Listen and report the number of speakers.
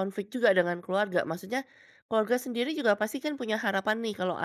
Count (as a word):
one